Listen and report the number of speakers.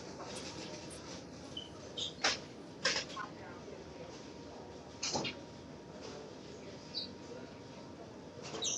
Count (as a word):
zero